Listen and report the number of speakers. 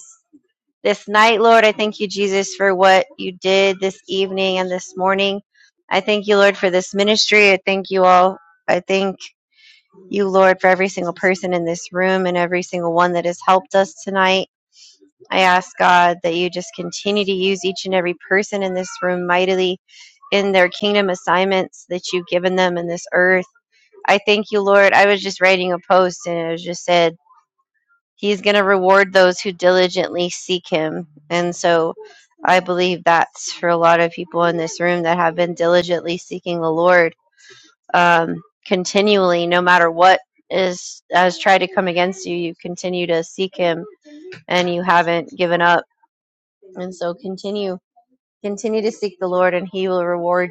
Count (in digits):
1